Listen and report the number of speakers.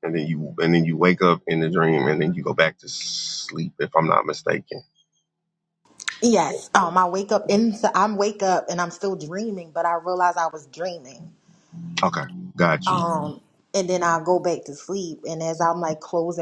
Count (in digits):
2